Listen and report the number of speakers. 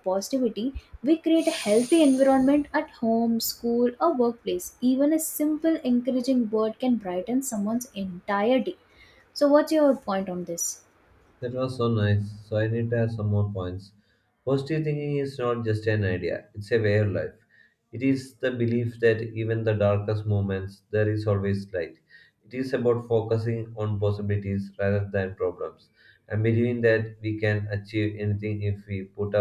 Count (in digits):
2